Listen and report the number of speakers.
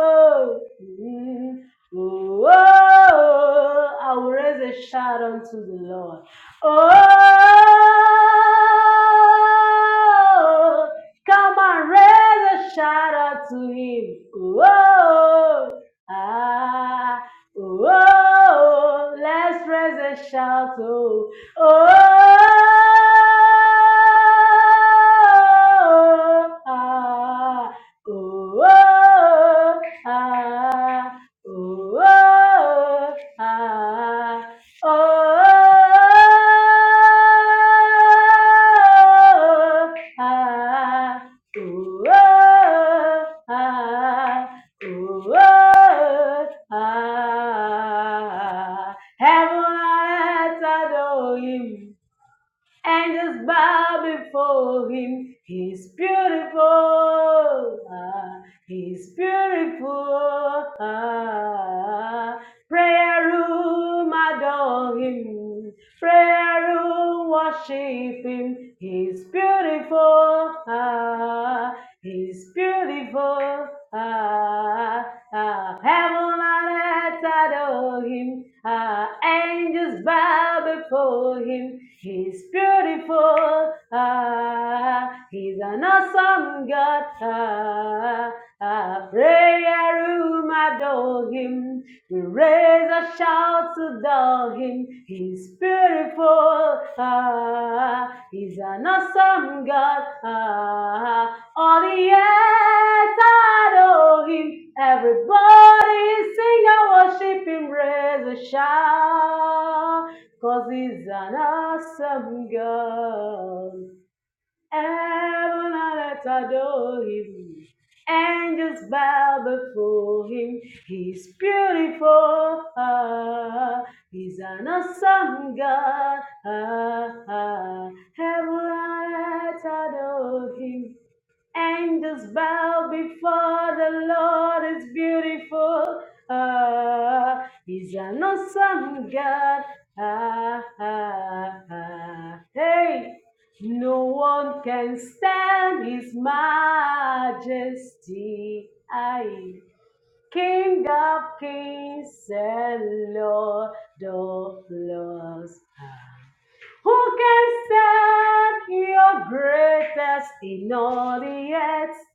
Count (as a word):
one